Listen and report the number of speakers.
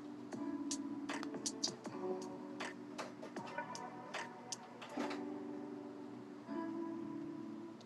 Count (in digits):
0